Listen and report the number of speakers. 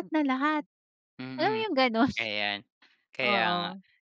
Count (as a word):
two